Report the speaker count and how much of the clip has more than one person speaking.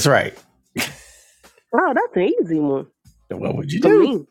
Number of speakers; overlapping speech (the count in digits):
2, about 7%